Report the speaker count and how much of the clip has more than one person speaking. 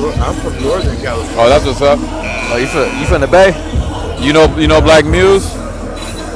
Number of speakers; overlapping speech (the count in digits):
3, about 10%